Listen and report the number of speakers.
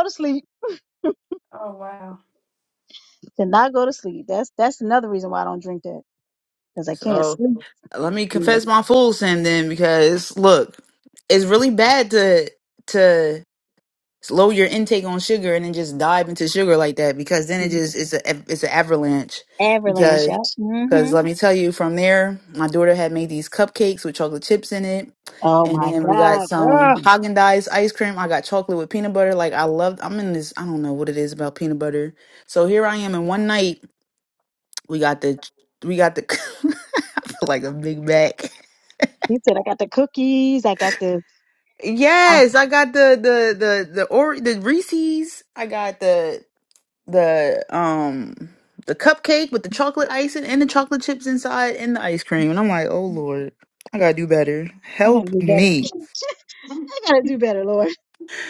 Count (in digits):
3